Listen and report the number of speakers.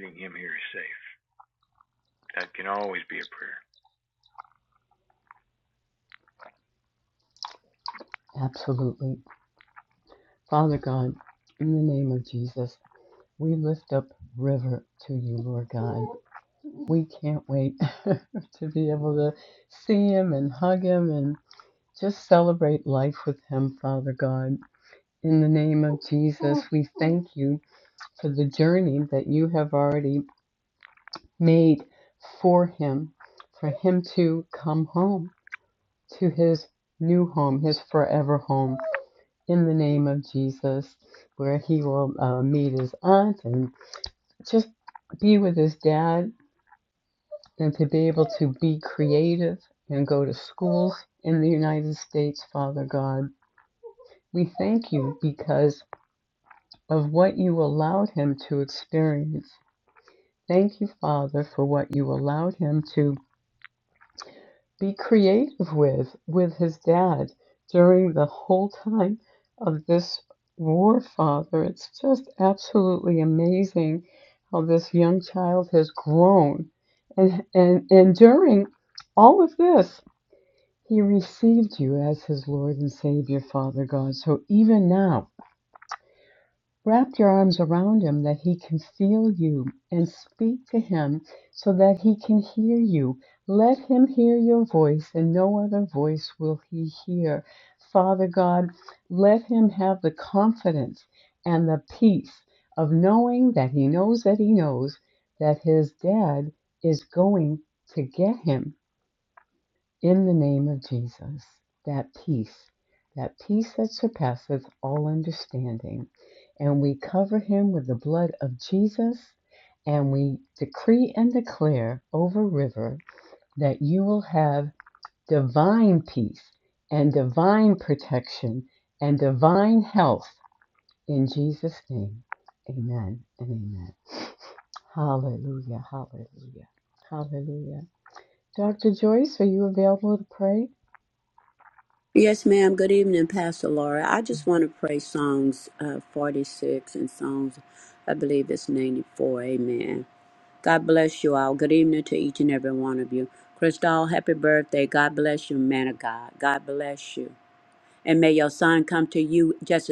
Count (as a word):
three